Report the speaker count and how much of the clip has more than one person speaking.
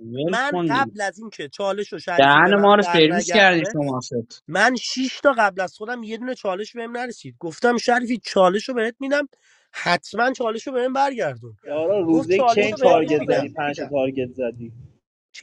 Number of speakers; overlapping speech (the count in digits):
3, about 20%